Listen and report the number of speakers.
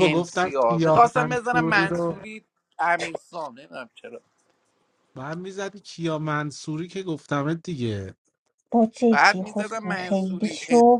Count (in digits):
3